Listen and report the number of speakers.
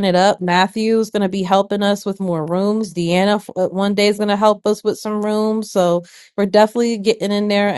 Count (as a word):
one